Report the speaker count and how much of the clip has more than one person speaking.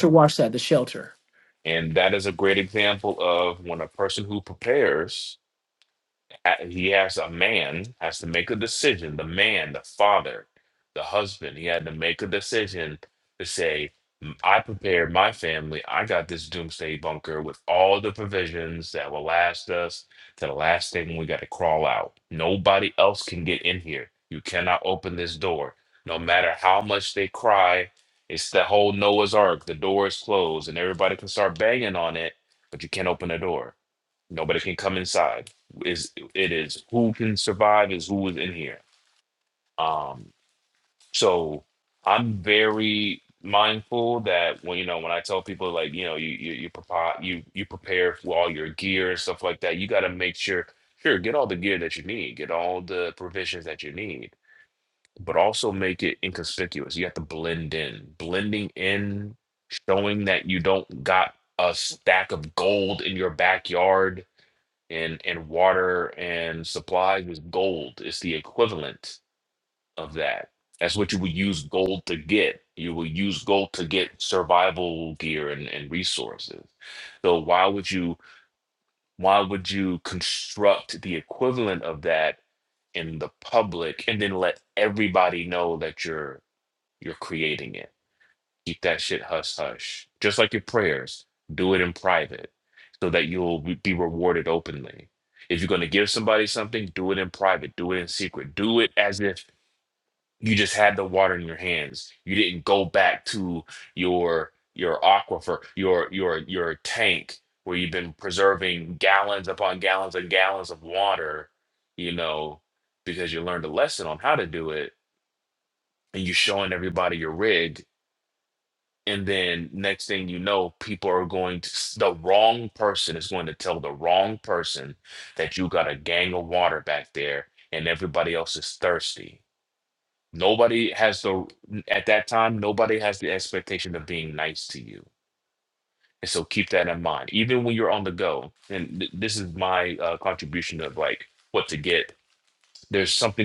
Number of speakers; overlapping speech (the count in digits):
2, under 1%